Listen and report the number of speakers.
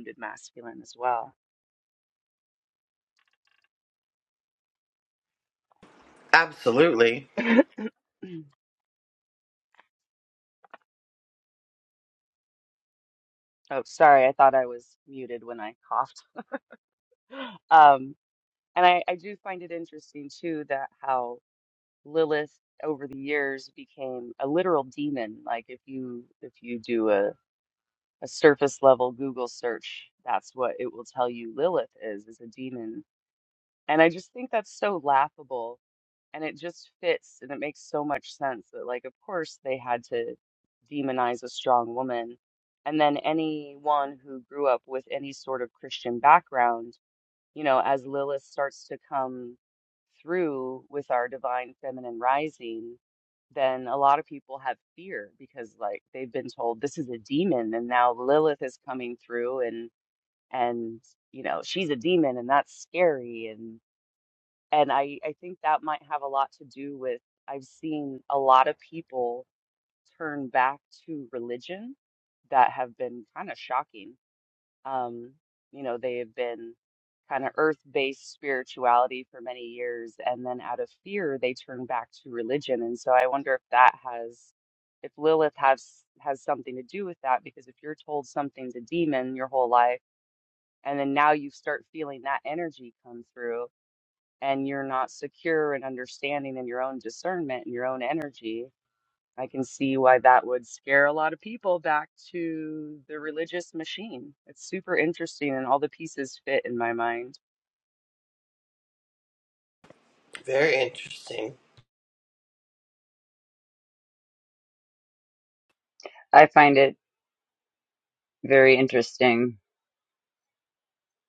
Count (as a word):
three